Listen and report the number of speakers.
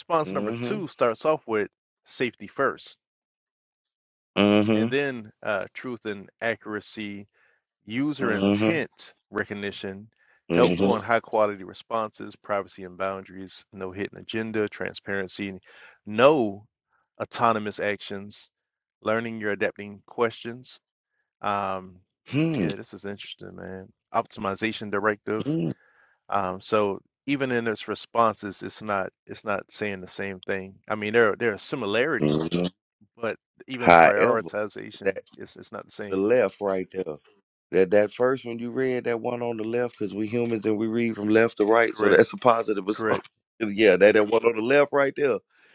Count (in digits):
2